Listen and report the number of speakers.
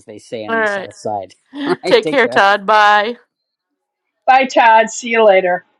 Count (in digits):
3